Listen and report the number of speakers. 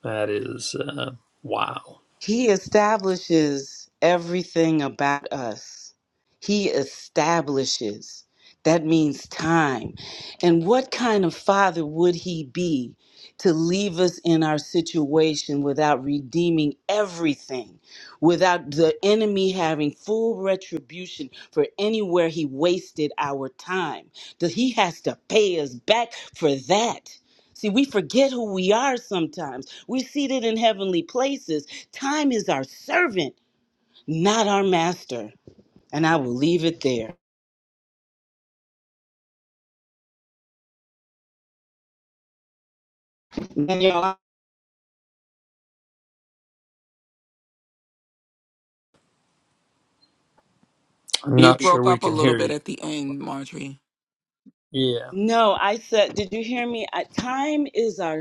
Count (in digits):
3